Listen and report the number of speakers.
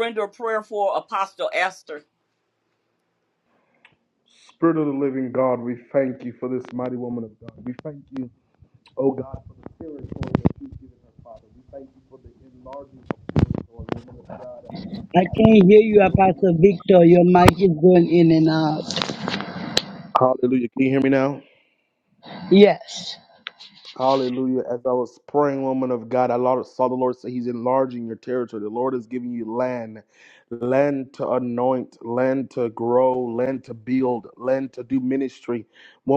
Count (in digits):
3